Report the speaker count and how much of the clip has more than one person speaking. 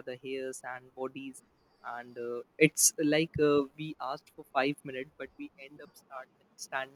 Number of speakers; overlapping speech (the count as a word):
one, no overlap